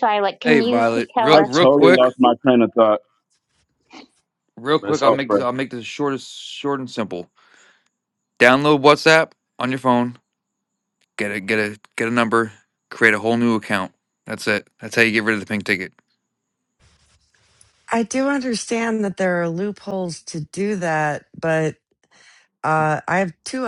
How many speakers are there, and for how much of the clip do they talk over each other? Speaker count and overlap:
4, about 10%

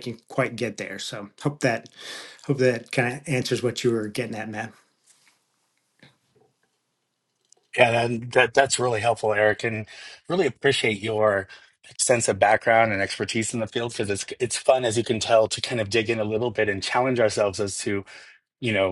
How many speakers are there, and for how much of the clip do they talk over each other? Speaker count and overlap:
2, no overlap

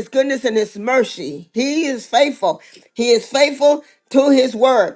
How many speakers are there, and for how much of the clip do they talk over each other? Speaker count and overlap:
1, no overlap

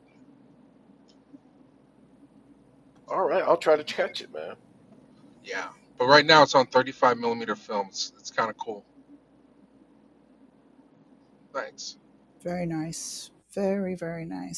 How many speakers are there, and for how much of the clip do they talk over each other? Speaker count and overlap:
3, no overlap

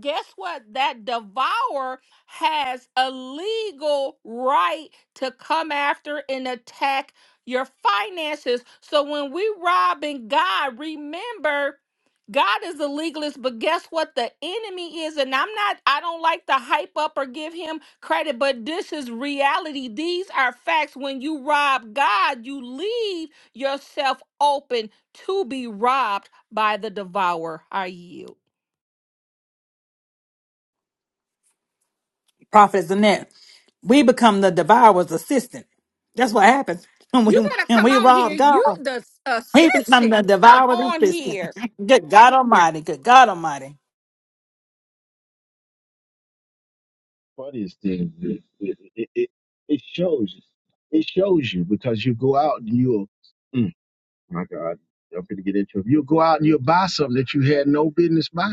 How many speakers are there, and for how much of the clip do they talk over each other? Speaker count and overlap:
3, about 6%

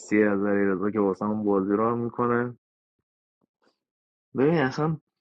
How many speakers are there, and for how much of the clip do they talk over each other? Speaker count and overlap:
1, no overlap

